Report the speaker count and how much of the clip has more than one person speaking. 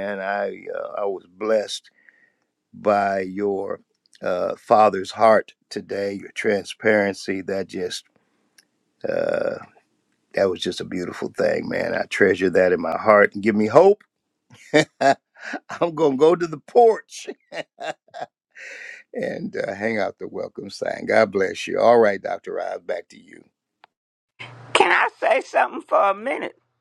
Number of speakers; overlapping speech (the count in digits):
2, no overlap